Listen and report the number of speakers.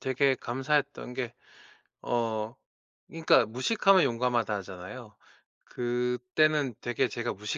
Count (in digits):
1